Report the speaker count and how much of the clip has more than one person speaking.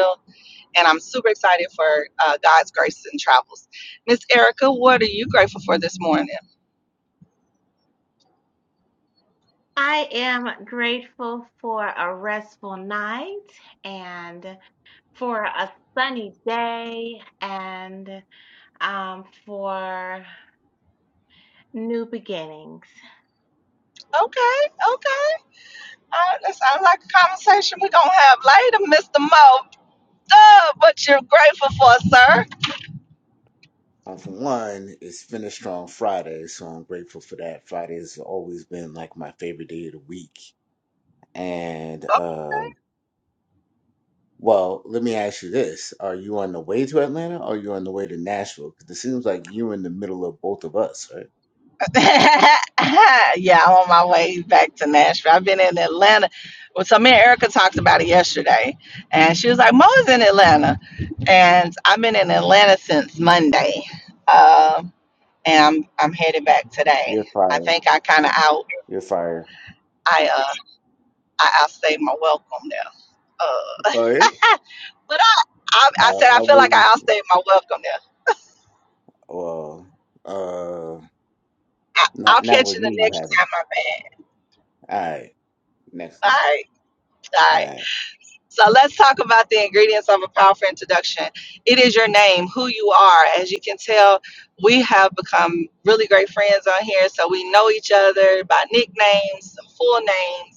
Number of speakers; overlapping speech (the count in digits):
3, about 3%